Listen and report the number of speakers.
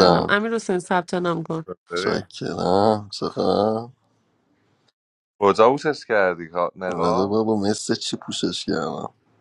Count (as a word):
three